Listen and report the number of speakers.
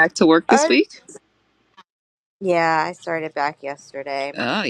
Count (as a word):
two